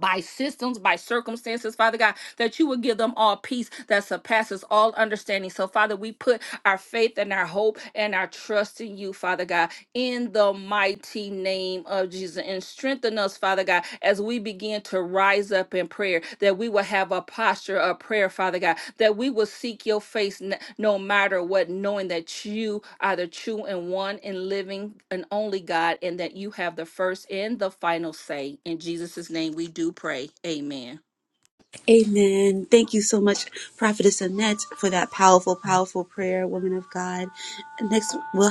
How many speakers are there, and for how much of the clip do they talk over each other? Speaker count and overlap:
2, no overlap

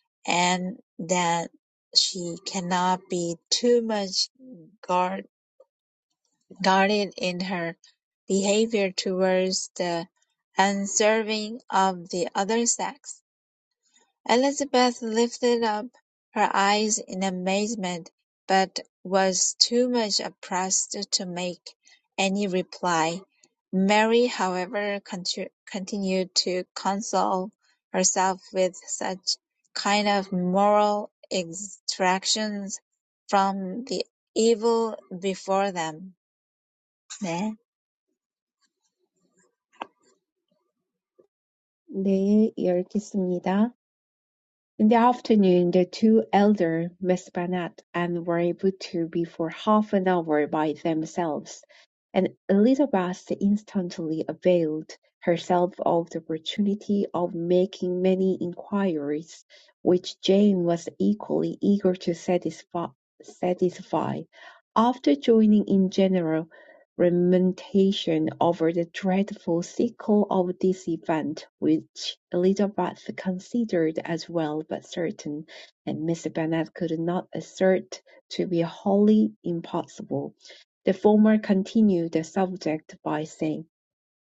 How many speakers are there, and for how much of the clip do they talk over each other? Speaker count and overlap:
2, no overlap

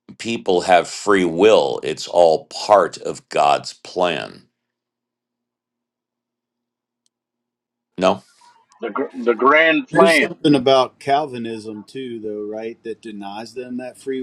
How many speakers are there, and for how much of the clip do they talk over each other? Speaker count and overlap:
3, about 3%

